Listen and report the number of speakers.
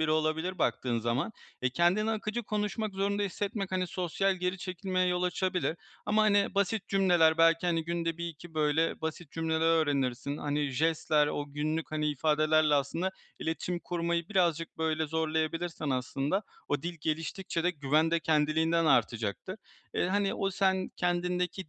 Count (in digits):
1